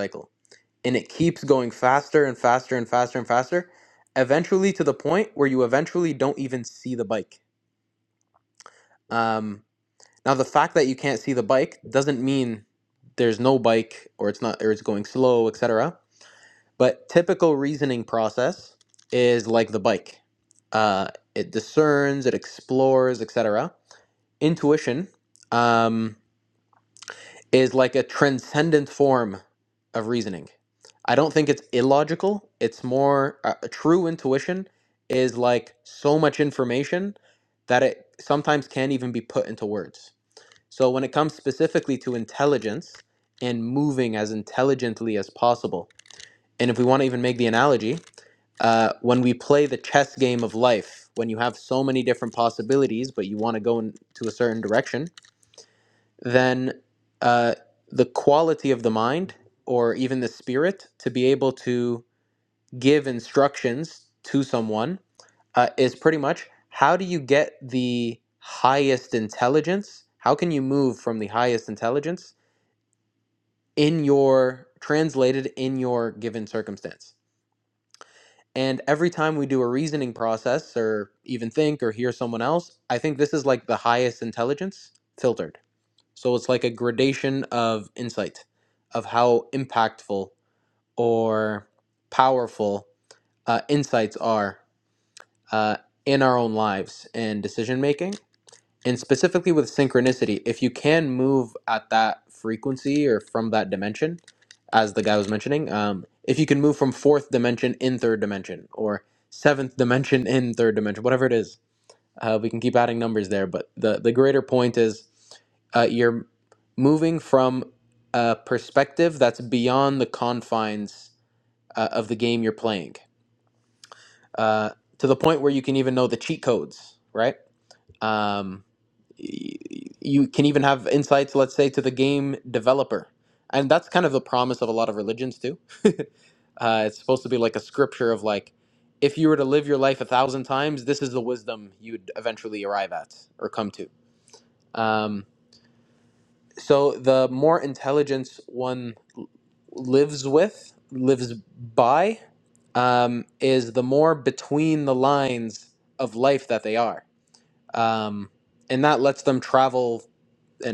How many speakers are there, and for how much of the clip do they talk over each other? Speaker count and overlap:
1, no overlap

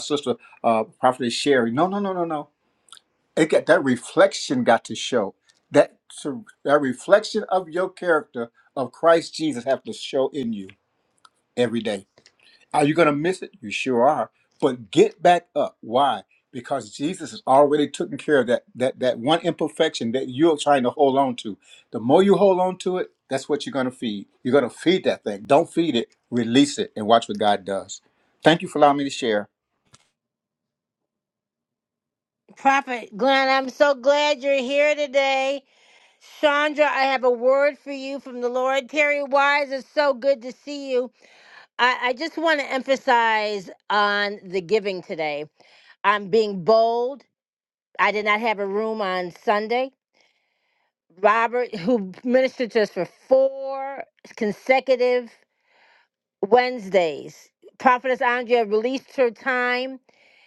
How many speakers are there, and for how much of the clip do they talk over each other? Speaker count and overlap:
2, no overlap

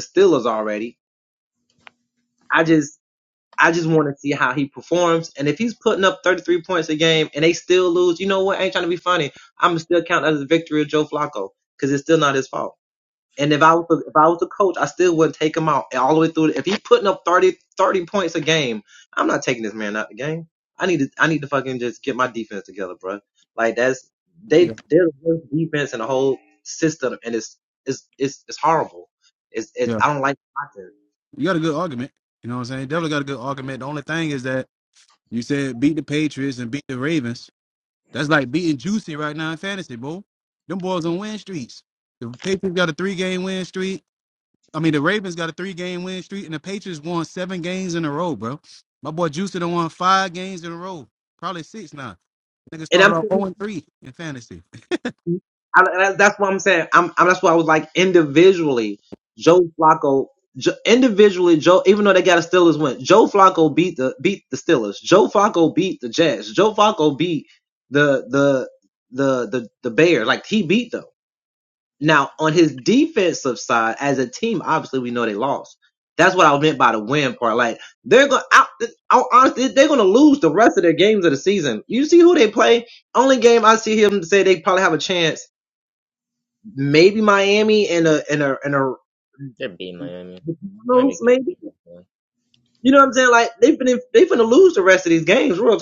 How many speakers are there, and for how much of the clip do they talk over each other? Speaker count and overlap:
3, about 2%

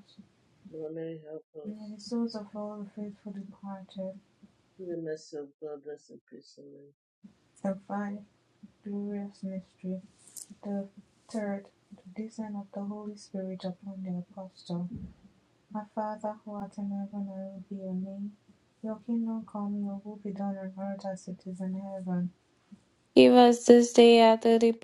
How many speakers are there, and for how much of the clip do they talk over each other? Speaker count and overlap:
3, under 1%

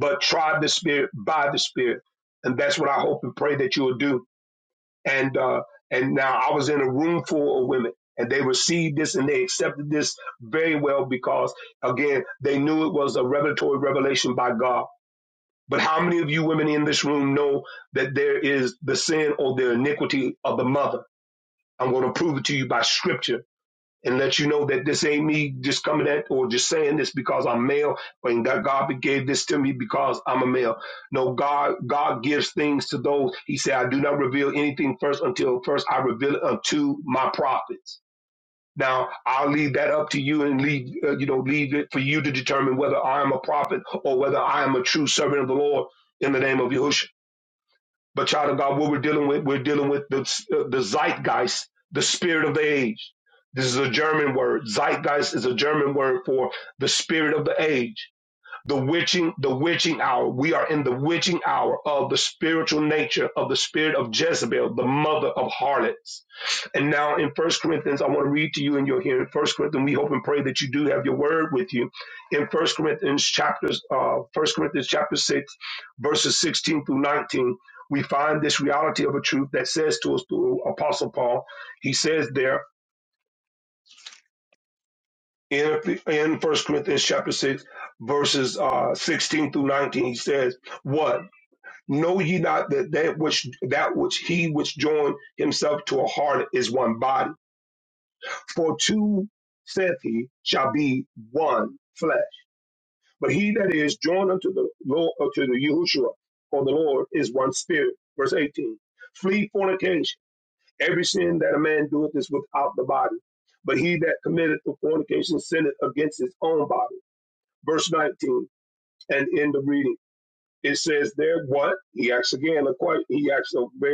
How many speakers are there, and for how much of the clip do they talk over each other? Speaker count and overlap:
1, no overlap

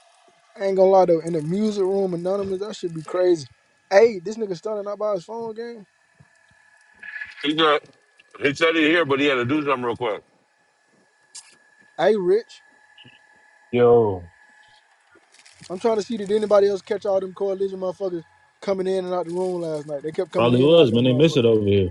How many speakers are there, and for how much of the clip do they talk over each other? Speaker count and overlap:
3, about 5%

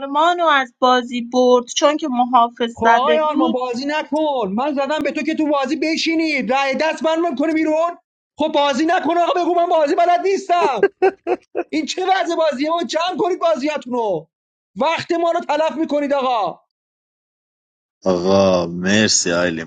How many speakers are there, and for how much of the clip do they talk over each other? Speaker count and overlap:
3, about 4%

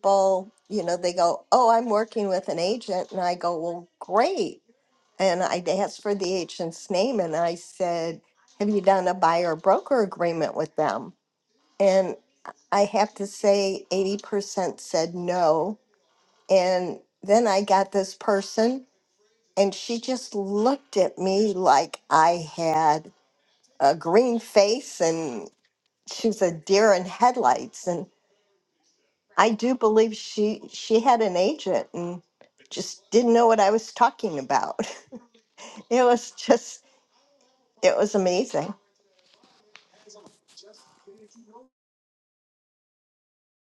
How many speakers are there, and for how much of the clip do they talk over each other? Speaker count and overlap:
1, no overlap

